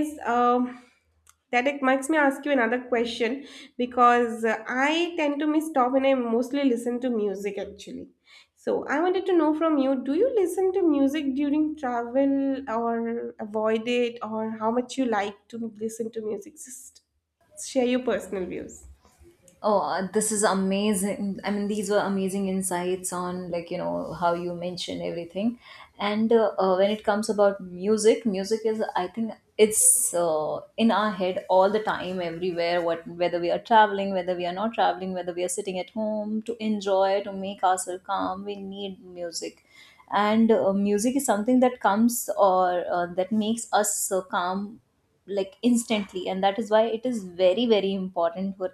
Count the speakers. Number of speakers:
2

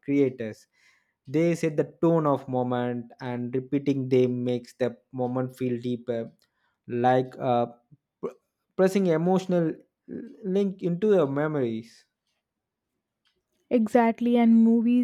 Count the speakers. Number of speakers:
2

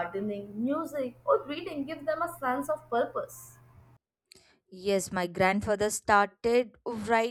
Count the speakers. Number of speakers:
2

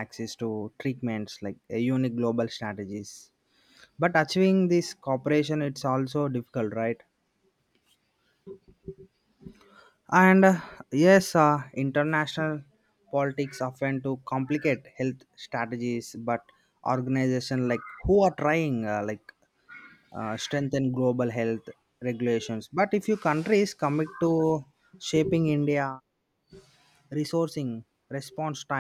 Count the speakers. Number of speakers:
1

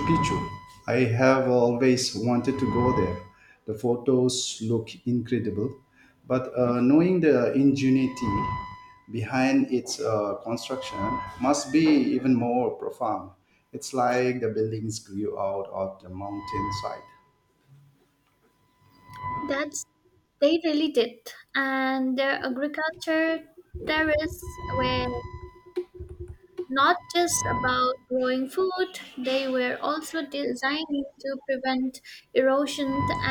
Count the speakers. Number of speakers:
2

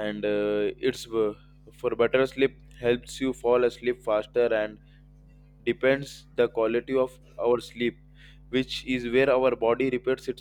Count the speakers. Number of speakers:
1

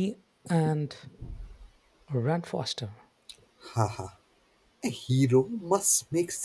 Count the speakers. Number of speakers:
2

